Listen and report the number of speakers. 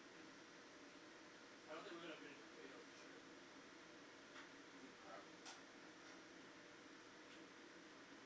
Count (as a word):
one